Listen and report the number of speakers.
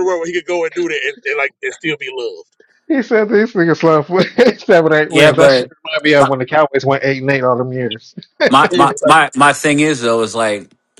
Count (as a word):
three